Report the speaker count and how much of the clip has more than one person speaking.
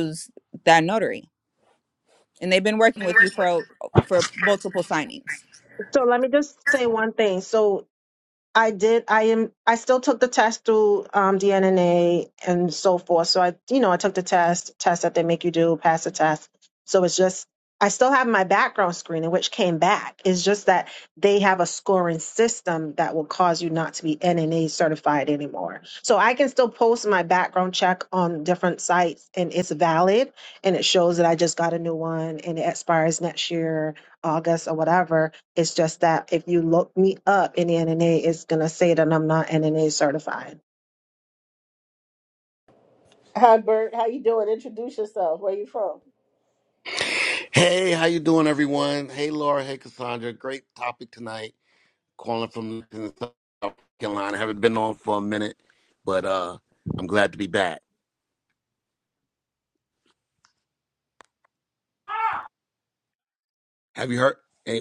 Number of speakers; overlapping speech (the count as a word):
four, no overlap